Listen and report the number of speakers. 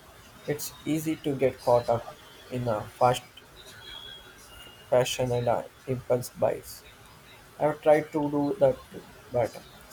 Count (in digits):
1